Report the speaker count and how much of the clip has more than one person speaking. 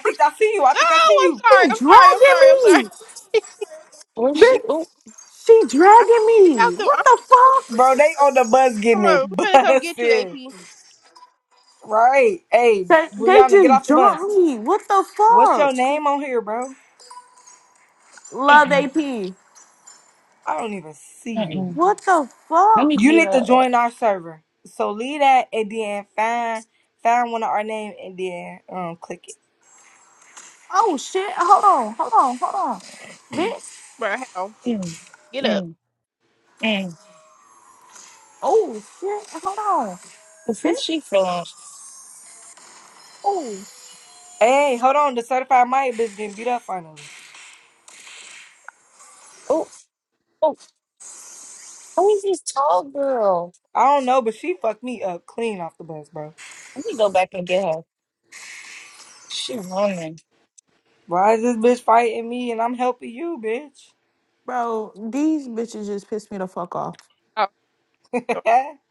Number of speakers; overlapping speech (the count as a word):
four, about 13%